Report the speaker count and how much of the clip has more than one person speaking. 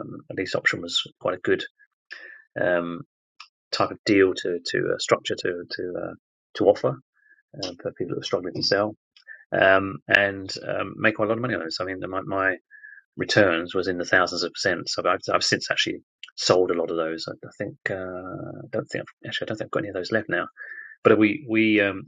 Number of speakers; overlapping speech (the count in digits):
1, no overlap